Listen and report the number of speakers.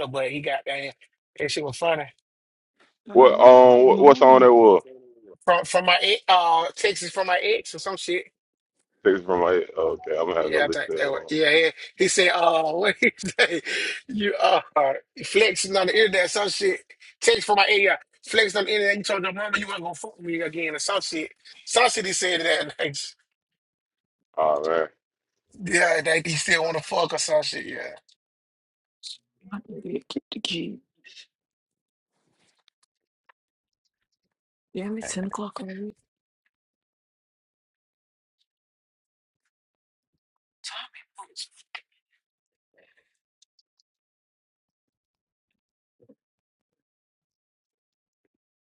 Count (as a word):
three